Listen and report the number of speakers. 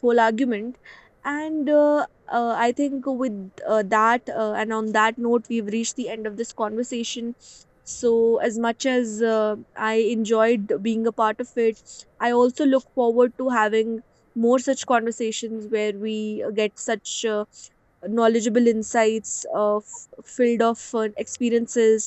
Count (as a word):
one